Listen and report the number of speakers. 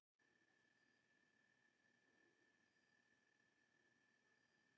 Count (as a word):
zero